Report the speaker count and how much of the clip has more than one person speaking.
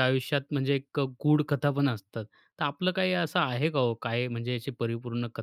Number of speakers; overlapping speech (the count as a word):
one, no overlap